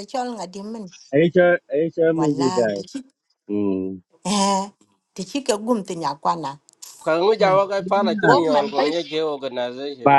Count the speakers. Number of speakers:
3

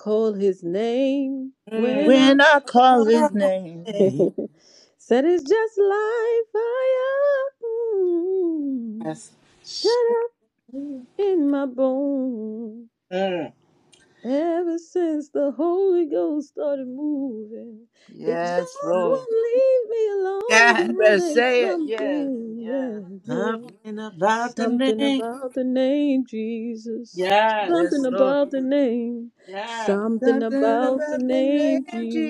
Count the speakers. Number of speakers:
3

